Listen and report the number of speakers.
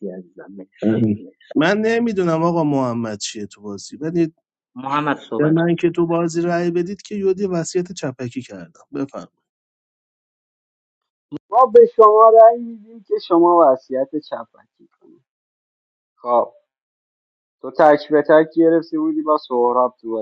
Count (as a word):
three